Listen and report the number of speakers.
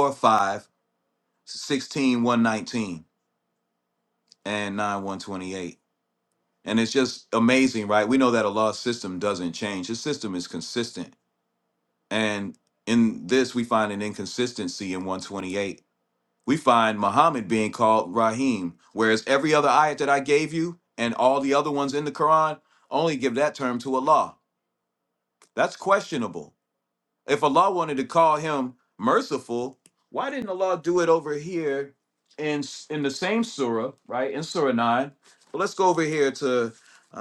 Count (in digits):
1